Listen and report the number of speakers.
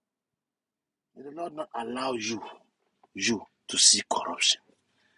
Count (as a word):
one